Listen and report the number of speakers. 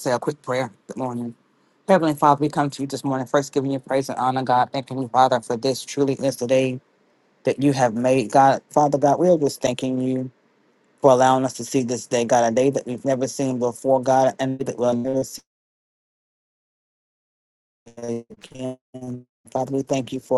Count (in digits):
1